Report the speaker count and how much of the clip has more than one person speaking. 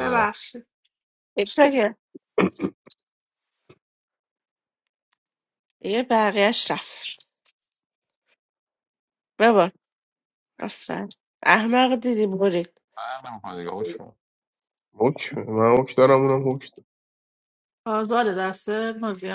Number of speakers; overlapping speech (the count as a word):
four, about 1%